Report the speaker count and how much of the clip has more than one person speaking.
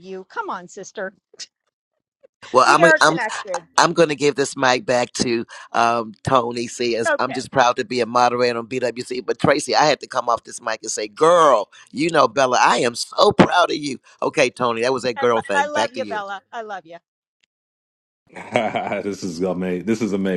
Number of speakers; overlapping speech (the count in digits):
3, about 10%